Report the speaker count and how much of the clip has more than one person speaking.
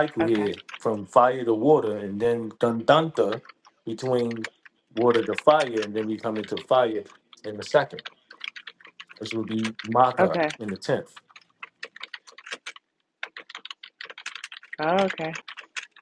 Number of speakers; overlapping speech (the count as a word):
two, about 4%